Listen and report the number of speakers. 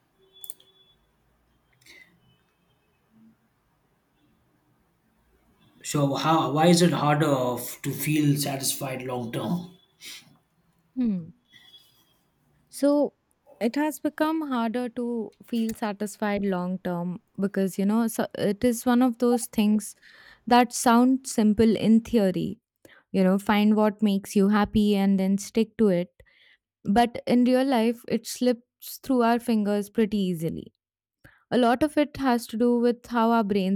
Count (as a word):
two